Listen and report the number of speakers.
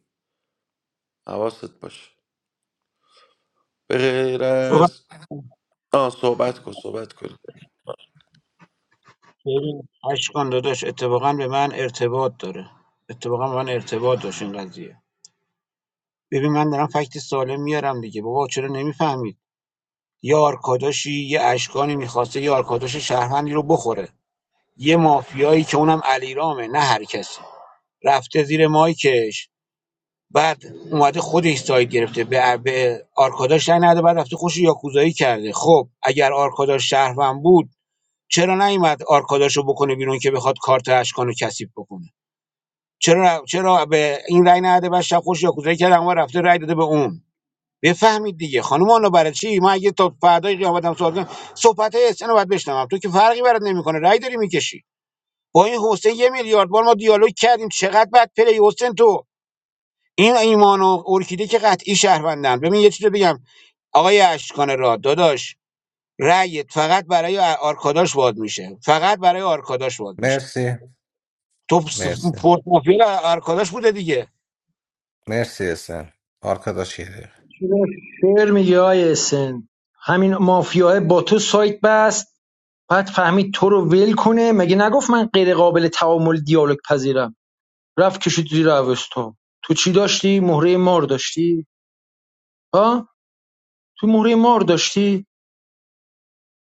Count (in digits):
4